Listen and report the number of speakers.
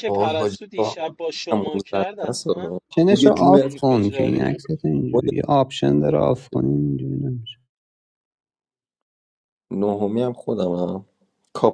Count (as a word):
three